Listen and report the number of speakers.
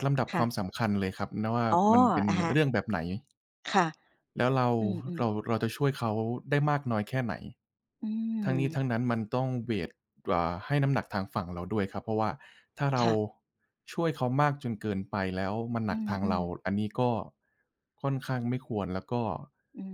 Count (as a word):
two